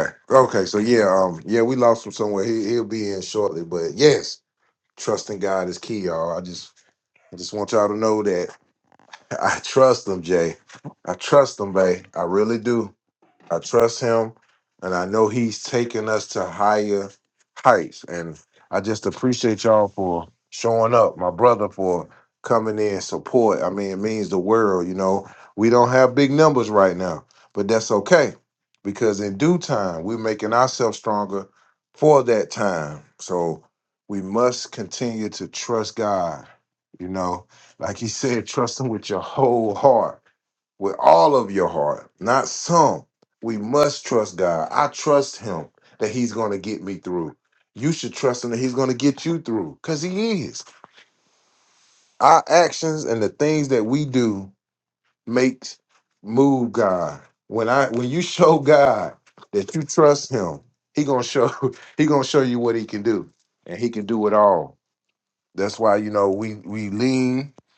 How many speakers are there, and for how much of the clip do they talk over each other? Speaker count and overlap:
1, no overlap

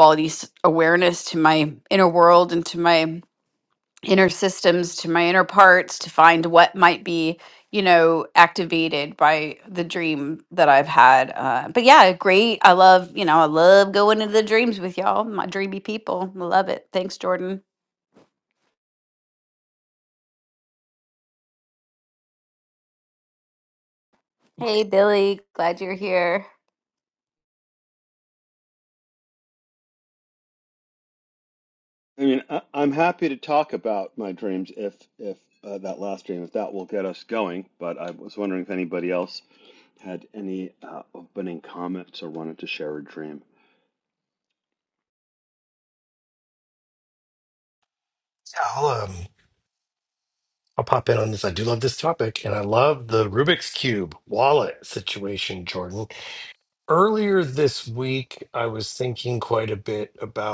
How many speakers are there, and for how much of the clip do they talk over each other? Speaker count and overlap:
3, no overlap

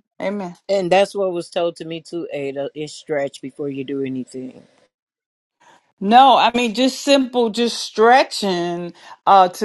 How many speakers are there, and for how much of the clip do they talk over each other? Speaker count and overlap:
2, no overlap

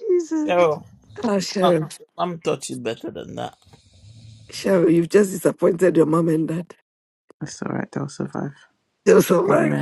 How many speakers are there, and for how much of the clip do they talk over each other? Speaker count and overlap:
3, about 7%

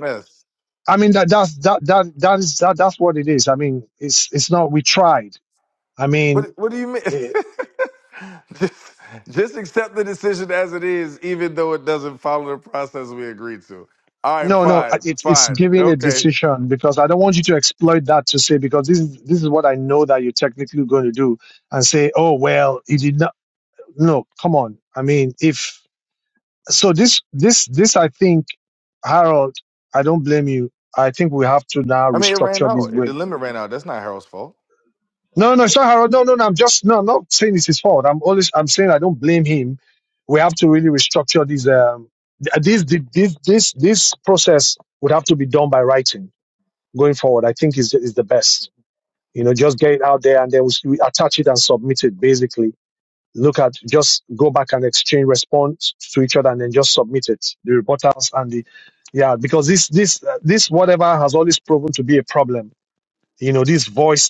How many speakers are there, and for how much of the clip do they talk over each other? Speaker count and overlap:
2, about 5%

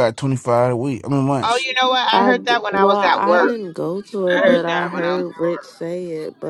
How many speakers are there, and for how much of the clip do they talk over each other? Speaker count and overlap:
3, about 38%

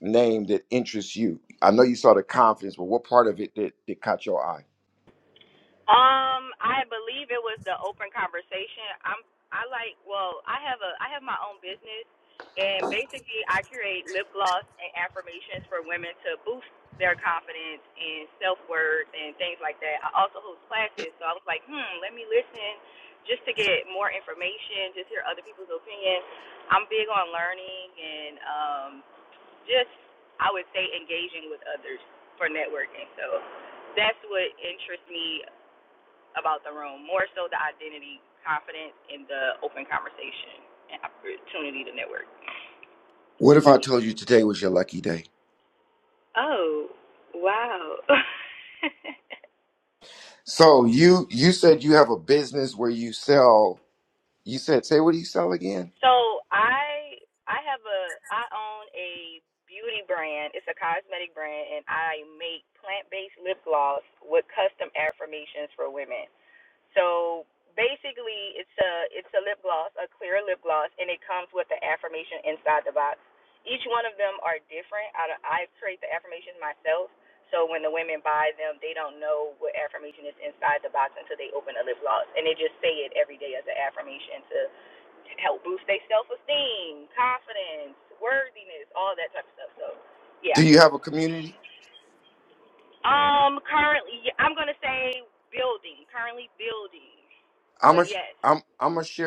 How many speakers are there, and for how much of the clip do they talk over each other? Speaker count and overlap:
2, under 1%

